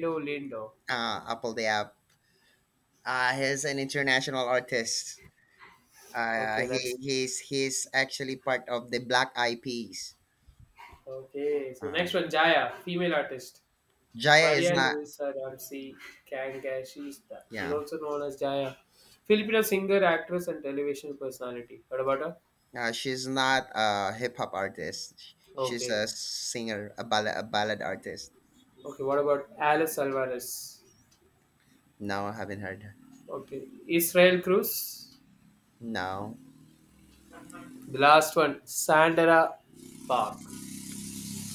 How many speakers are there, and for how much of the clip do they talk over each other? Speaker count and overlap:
2, about 5%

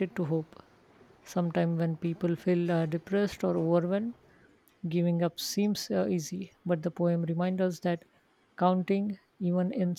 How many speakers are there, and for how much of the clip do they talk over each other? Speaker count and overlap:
1, no overlap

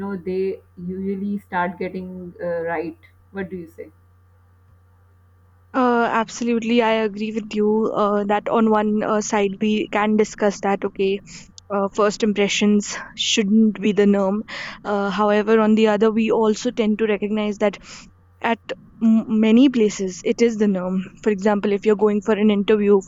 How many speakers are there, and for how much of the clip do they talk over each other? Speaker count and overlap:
2, no overlap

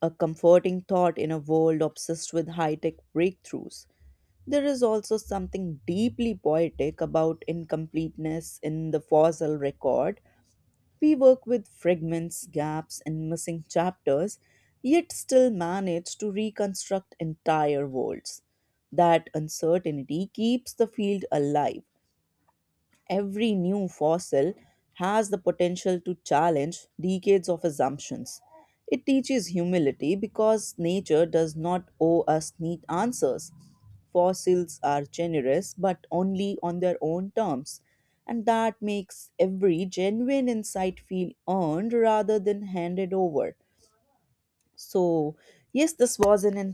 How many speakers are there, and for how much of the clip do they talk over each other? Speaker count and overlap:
1, no overlap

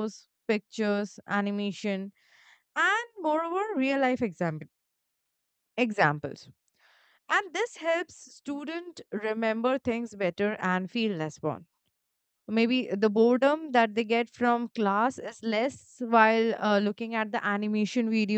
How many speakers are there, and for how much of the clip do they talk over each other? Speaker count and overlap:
1, no overlap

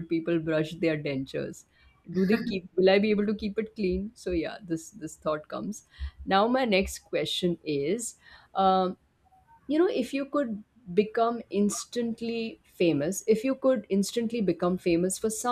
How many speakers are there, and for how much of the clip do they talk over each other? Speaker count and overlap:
1, no overlap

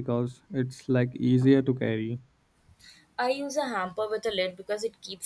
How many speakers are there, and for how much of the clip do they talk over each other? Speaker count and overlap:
2, no overlap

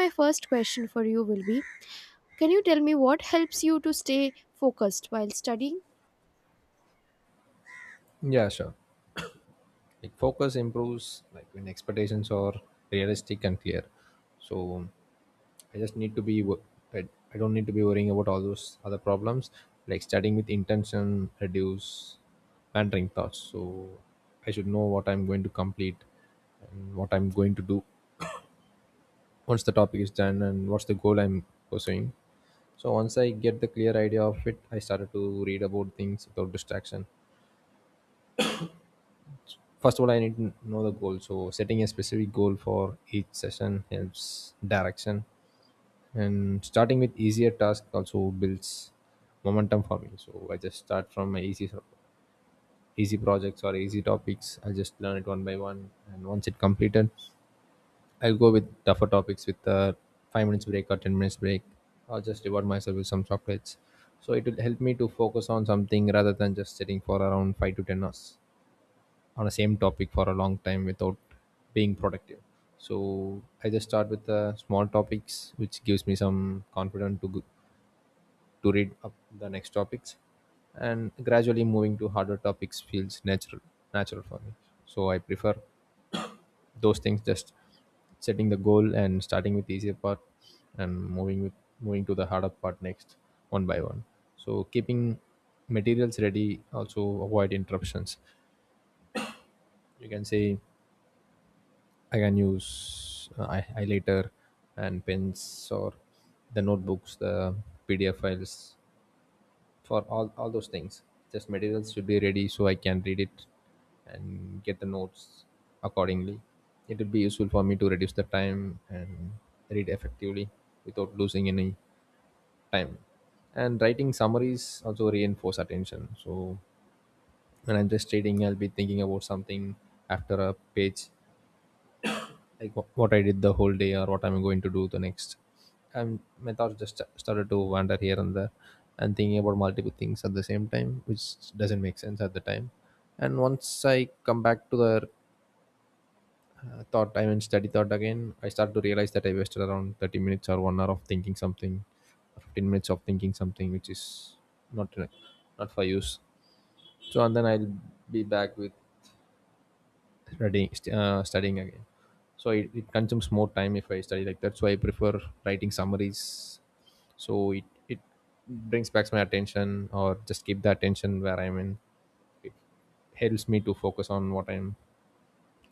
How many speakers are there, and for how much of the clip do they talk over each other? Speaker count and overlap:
2, no overlap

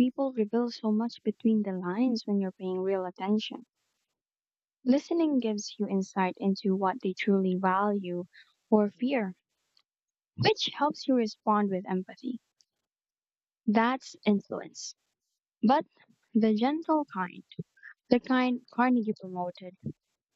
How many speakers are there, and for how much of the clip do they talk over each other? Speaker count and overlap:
1, no overlap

